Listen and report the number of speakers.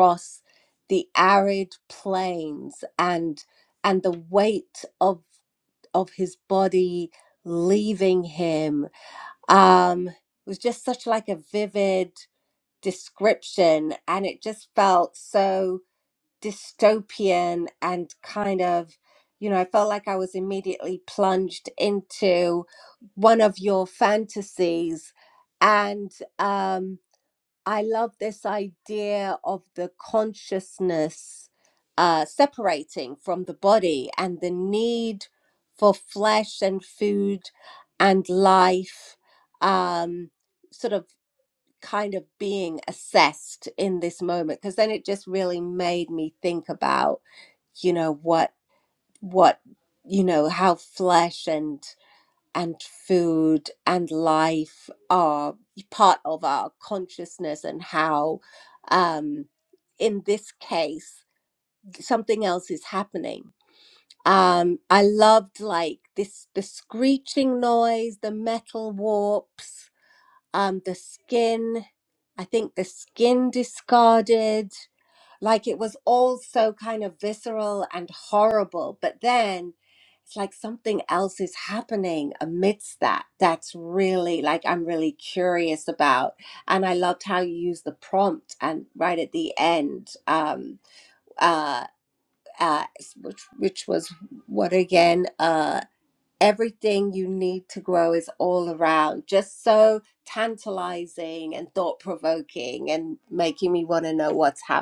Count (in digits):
1